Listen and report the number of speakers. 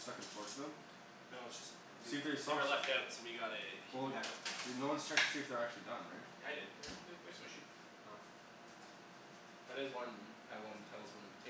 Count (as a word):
two